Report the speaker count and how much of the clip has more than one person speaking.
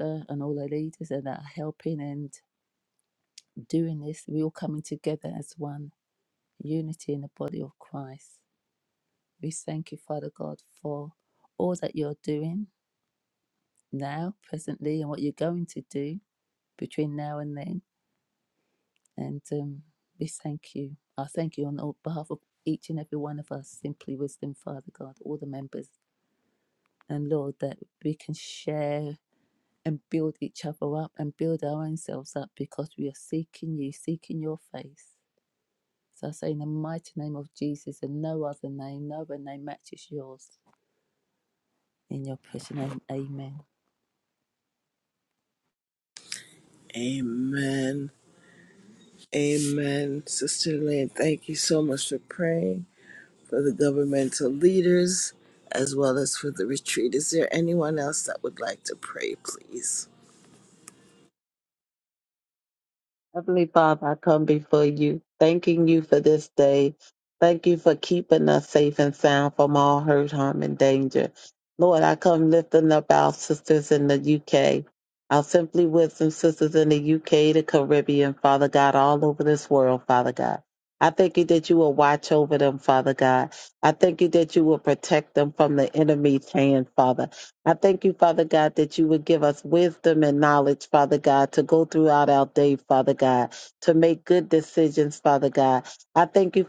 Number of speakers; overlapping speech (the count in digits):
3, no overlap